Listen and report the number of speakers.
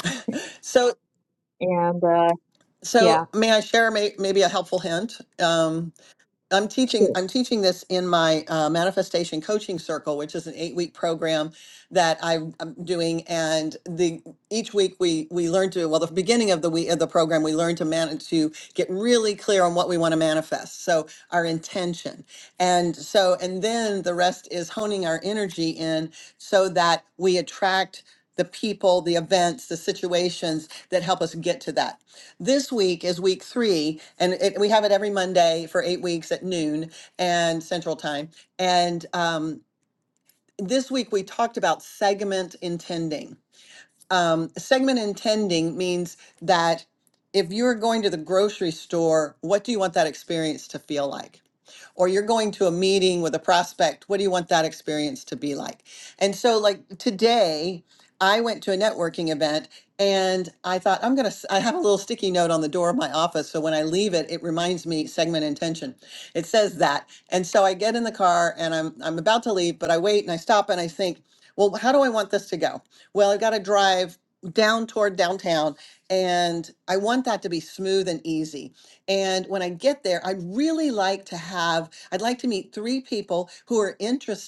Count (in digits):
2